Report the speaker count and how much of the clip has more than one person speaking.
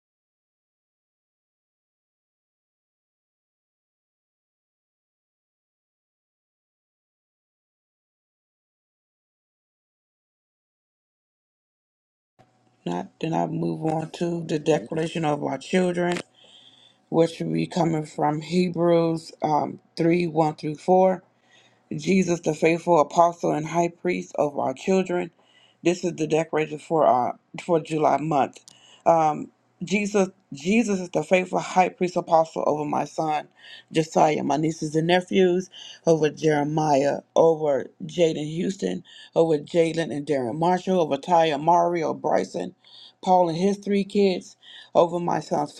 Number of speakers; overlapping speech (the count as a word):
one, no overlap